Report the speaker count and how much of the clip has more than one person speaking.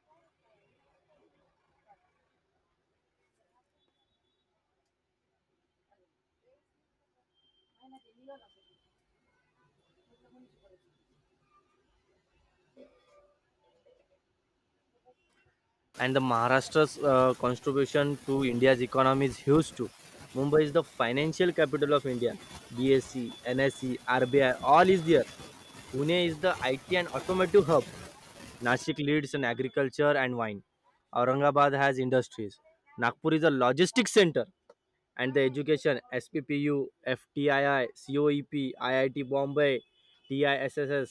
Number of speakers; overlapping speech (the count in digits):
1, no overlap